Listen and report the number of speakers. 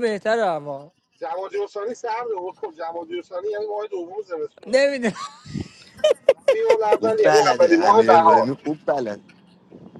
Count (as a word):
three